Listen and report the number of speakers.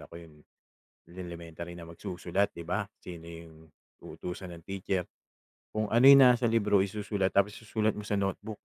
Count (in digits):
1